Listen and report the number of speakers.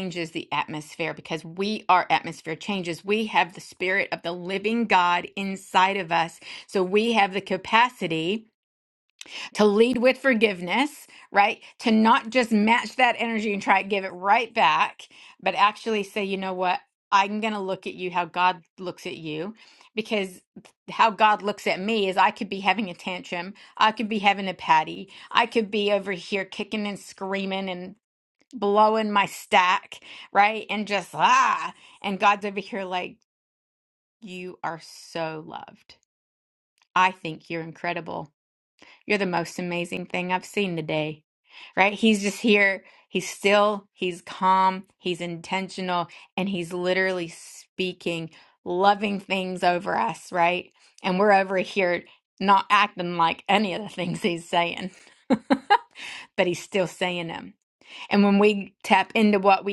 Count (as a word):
one